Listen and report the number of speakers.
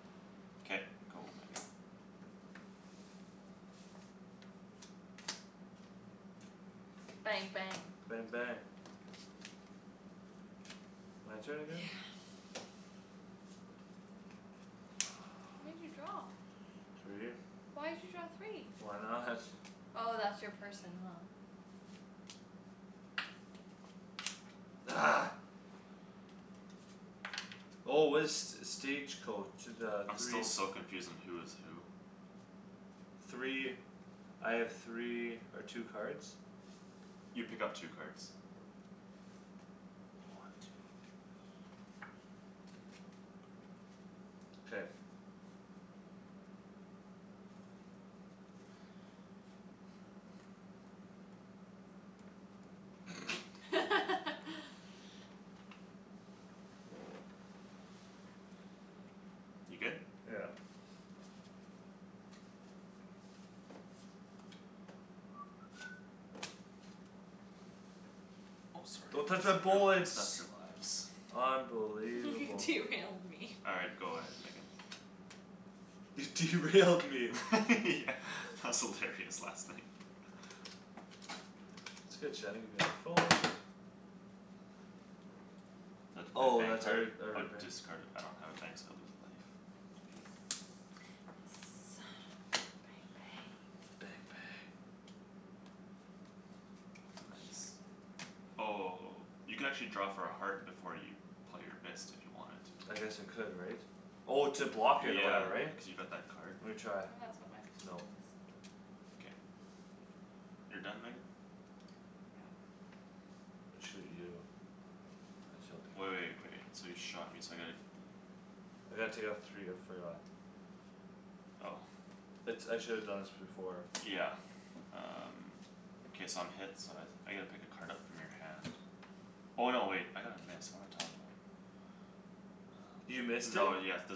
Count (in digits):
3